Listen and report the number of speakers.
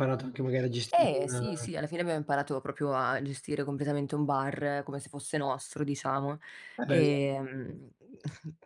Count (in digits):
2